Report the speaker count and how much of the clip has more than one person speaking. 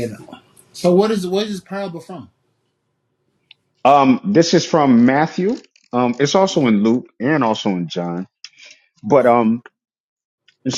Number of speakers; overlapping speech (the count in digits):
2, about 2%